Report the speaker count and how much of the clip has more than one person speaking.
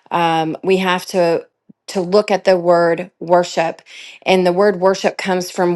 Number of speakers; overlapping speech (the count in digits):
1, no overlap